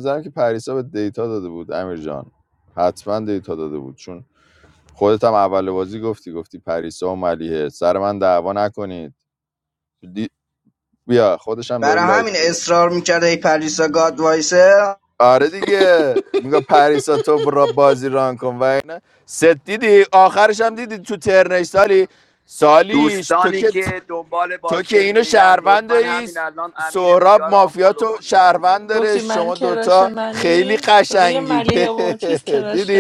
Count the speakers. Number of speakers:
four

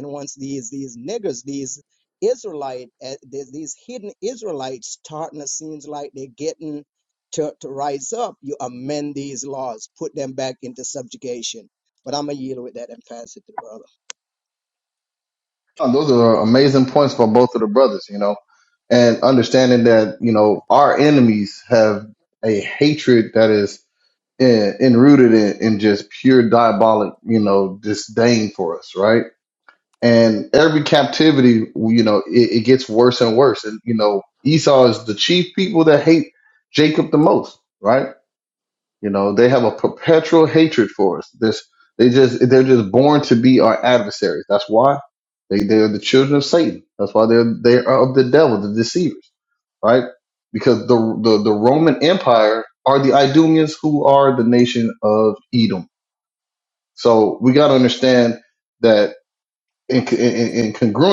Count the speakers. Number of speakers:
two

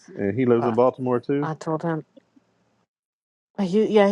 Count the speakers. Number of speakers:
two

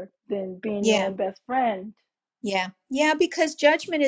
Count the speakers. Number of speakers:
two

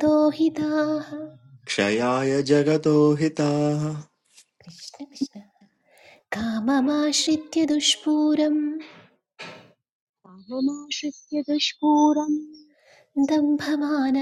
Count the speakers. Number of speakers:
three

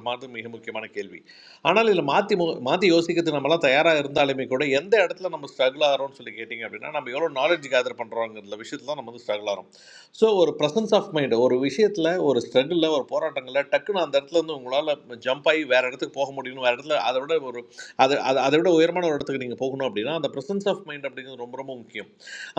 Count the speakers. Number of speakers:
one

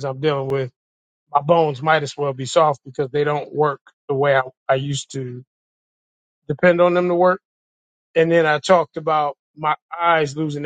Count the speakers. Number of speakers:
one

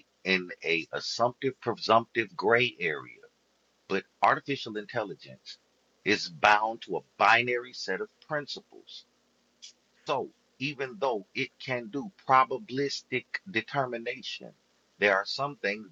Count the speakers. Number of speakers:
one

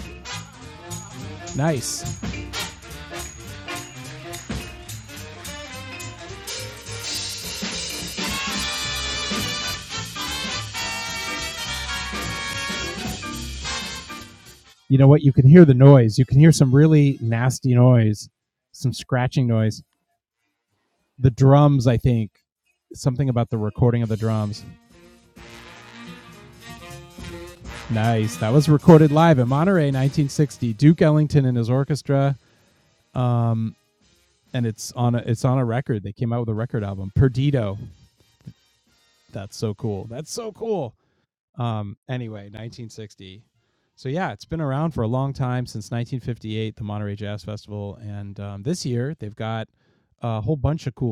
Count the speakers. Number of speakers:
one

